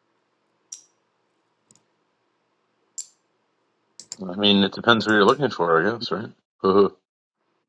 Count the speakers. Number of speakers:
one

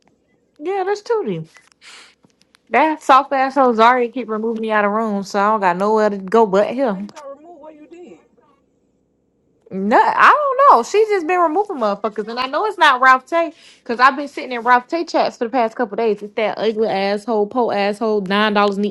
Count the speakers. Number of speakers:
two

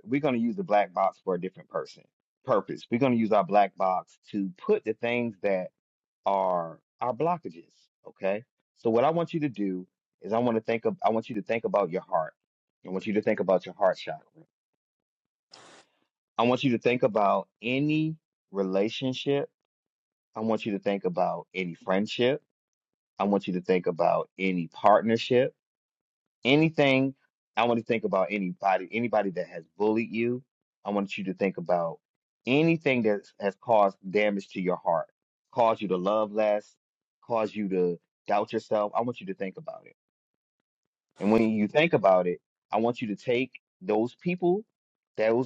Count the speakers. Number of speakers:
one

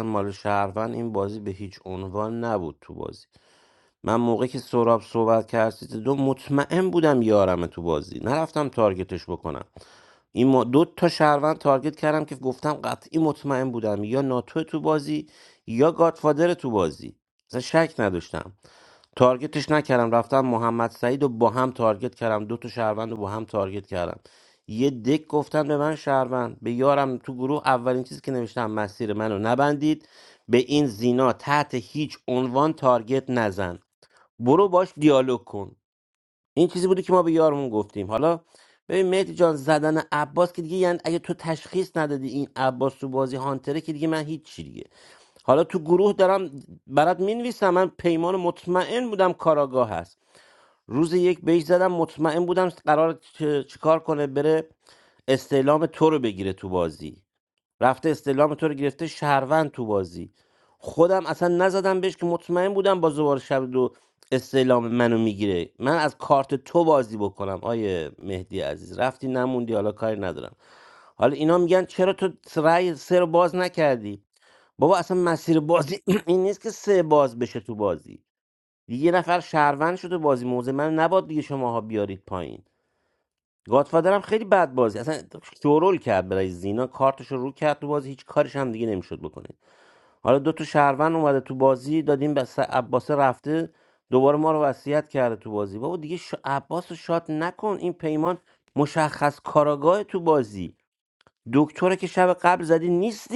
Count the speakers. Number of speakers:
one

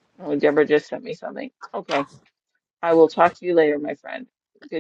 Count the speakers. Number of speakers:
one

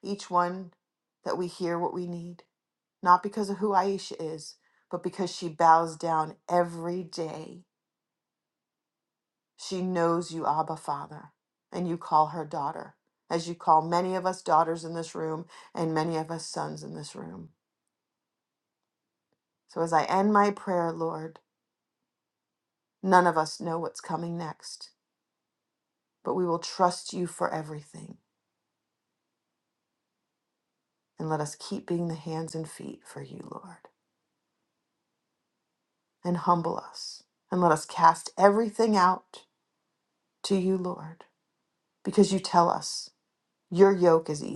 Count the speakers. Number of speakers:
one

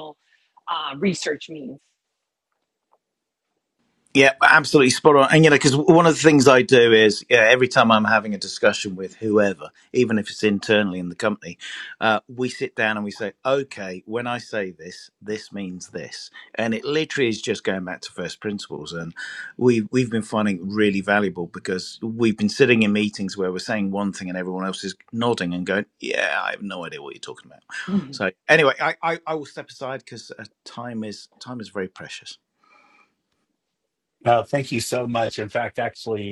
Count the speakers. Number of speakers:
three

